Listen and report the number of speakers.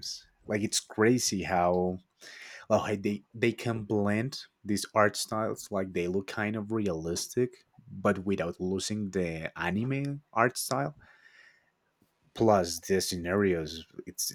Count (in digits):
1